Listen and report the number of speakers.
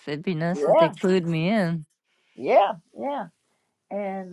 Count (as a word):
two